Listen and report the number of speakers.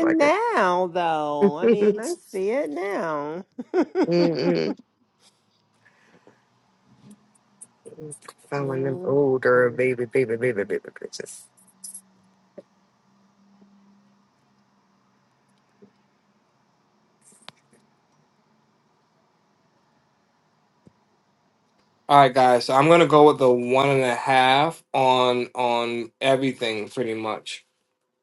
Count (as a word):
three